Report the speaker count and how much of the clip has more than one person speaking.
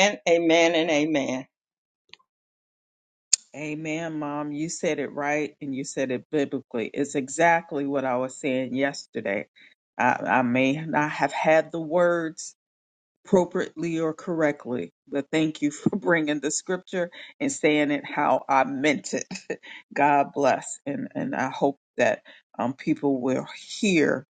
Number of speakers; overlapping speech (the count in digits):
2, no overlap